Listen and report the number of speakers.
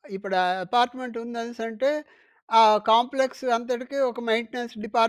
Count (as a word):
one